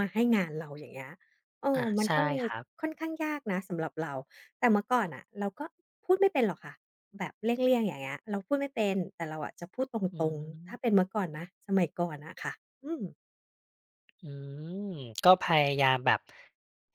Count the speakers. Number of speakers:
2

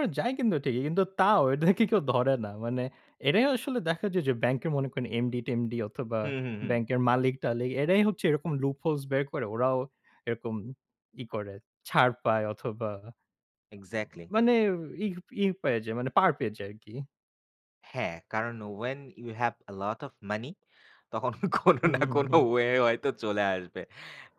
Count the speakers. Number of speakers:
2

